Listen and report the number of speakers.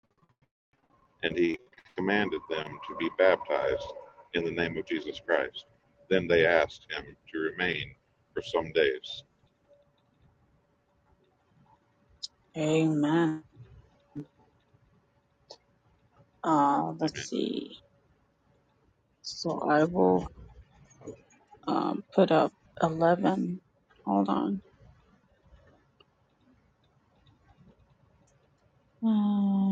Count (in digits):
2